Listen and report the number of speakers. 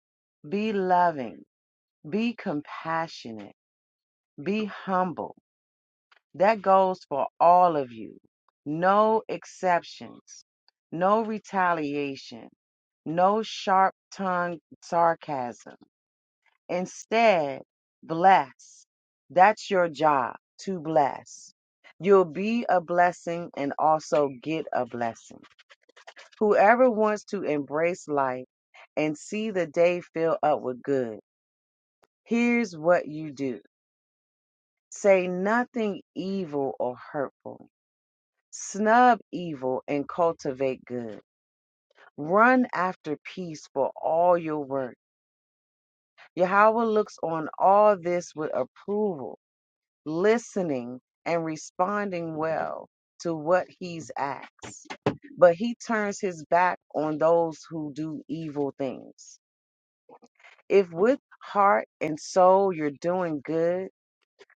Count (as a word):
one